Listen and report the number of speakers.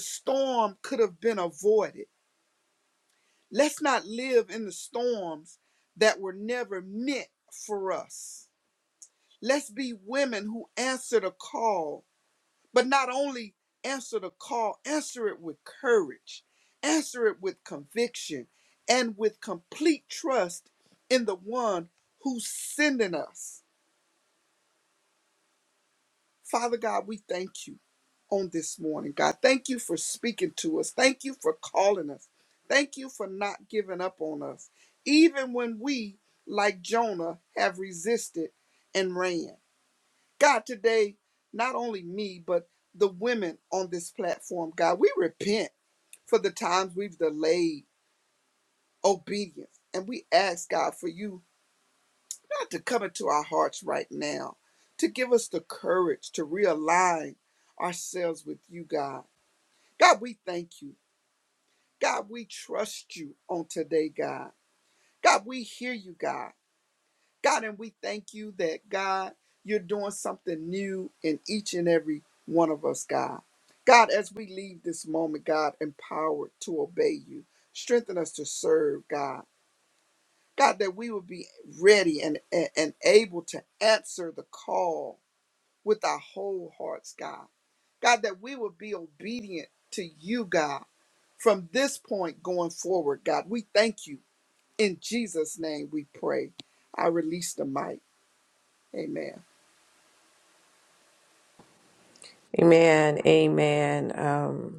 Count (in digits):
2